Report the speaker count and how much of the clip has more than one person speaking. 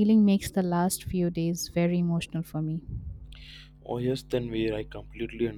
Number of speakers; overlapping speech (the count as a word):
two, no overlap